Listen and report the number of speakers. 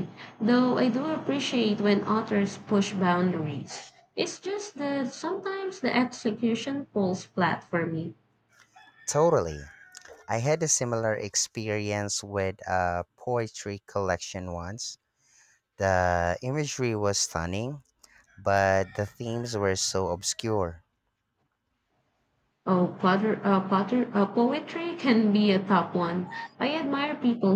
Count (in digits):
2